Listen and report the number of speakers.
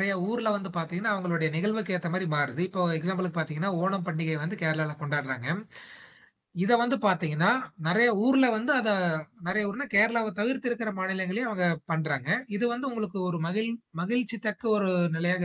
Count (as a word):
one